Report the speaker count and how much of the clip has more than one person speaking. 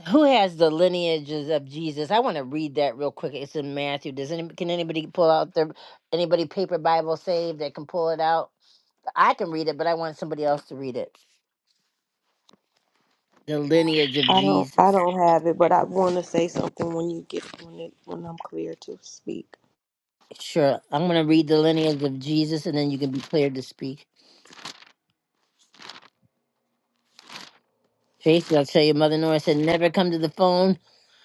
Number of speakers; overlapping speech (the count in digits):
2, about 1%